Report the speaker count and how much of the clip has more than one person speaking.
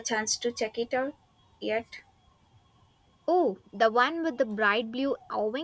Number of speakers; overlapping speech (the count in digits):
2, no overlap